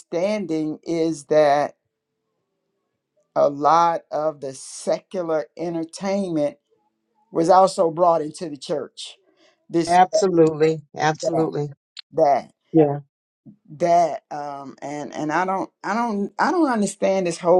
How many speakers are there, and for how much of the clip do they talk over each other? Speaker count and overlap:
two, about 1%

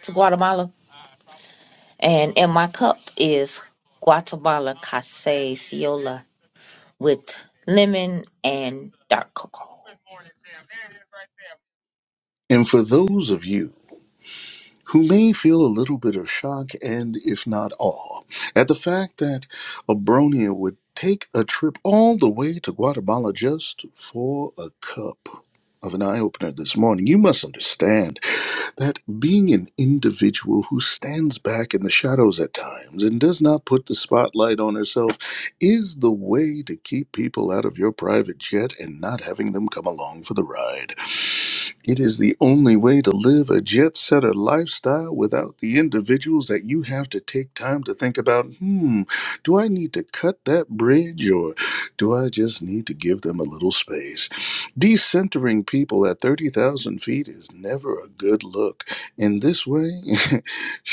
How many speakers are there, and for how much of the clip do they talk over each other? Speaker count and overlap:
two, no overlap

